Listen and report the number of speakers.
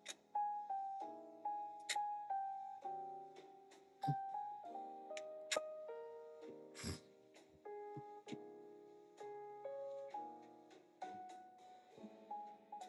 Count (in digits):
0